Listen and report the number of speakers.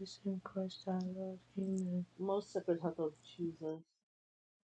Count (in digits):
2